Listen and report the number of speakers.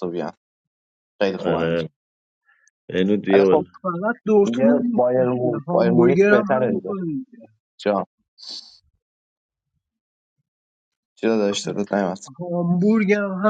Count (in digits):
3